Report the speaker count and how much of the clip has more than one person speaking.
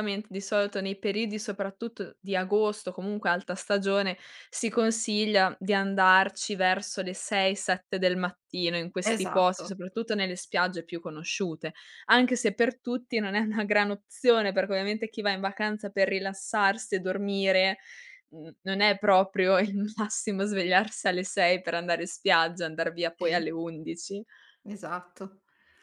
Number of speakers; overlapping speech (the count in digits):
2, about 3%